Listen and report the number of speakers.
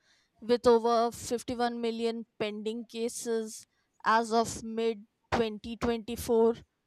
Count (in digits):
1